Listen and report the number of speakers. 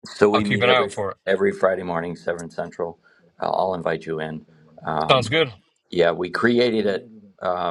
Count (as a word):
two